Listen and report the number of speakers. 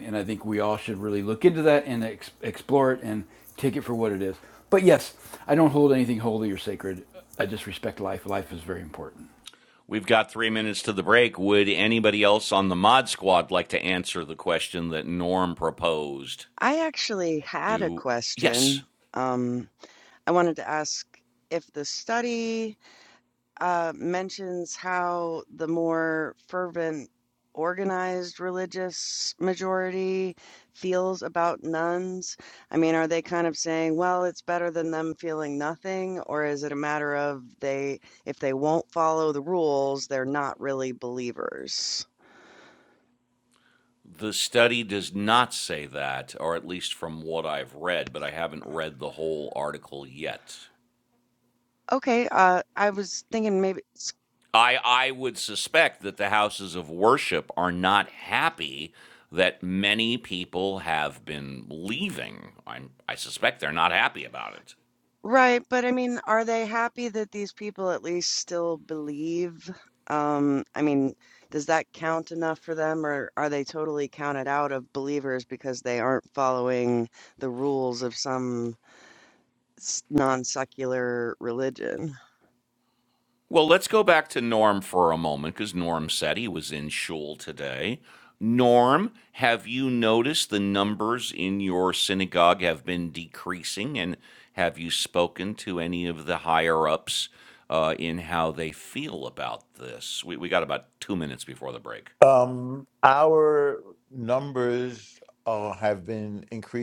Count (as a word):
four